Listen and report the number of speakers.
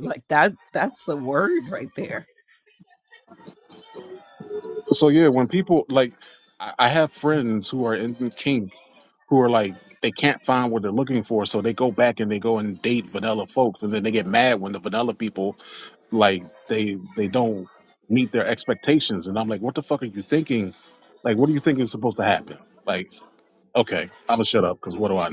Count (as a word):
two